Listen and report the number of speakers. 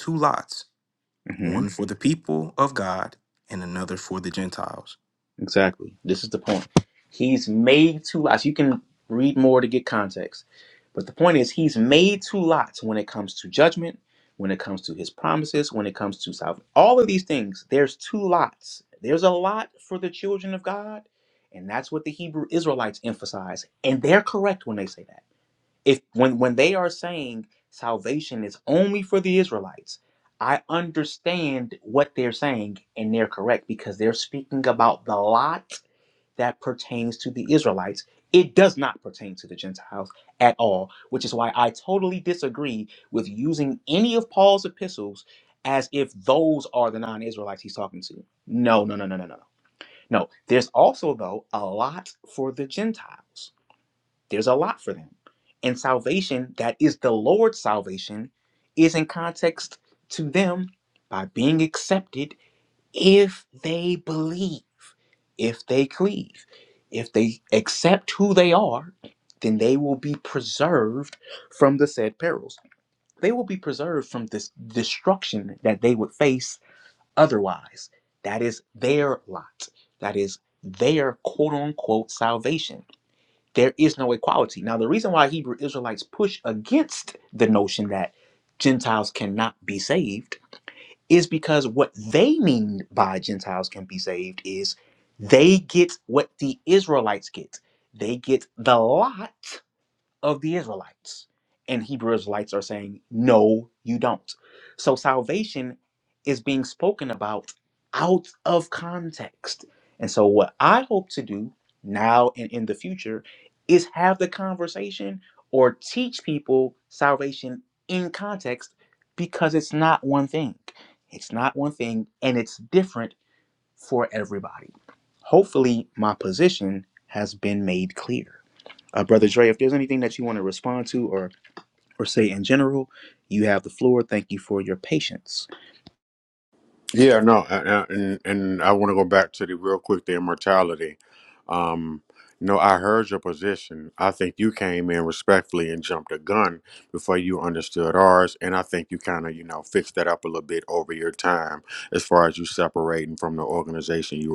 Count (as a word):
three